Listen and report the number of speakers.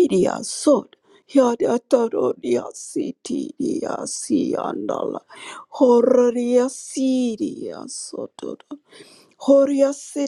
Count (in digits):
1